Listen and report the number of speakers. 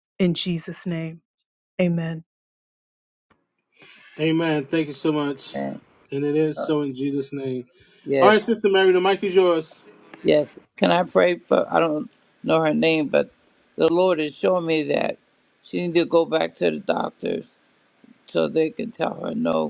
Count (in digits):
3